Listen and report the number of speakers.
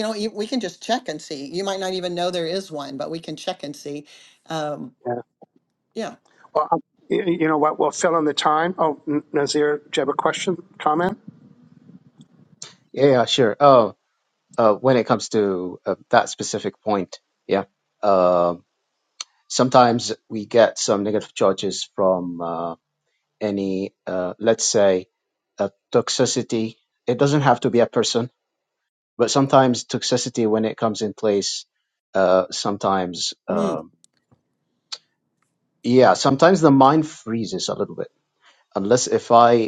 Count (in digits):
3